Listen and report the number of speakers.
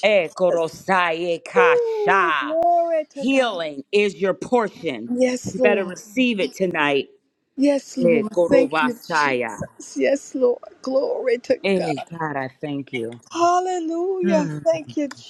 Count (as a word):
two